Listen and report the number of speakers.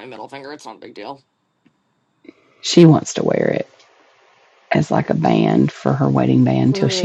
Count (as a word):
two